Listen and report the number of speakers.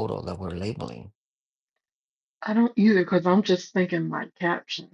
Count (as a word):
two